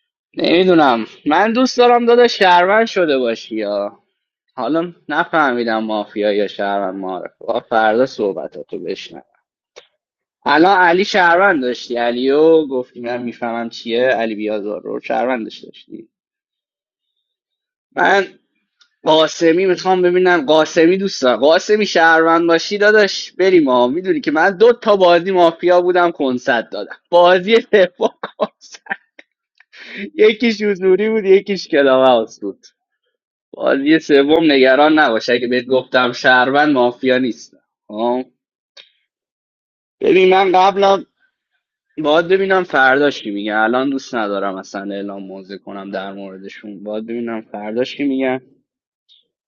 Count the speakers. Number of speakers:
one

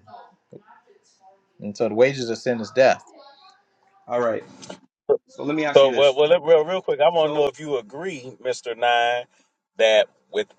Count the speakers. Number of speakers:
three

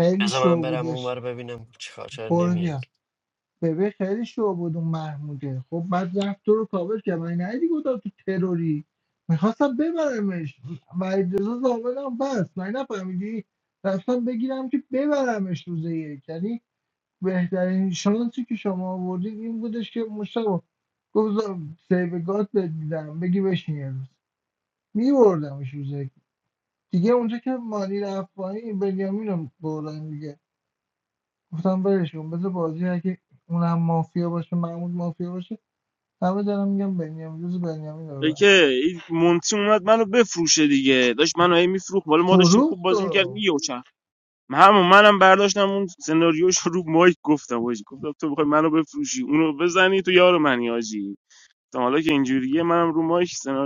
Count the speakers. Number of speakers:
three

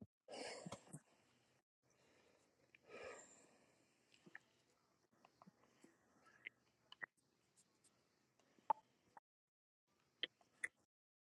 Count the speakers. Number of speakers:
zero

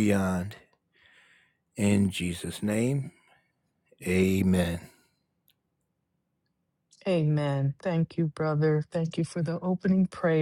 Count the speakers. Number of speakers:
two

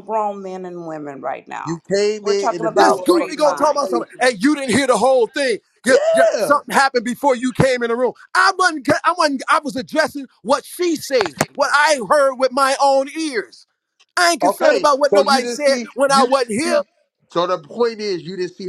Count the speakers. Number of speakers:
three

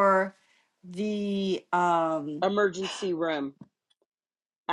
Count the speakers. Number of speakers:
two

